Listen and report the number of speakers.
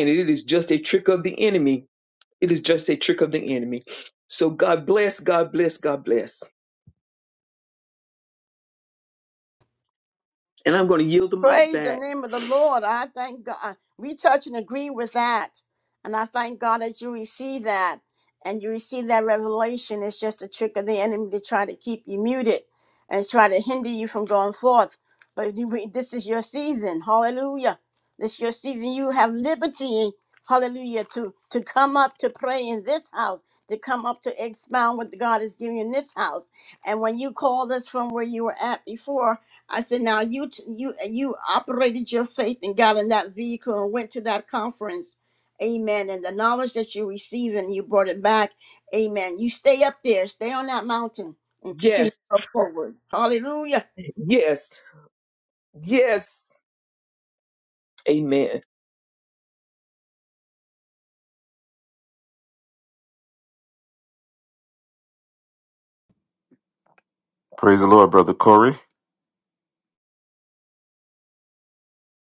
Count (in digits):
3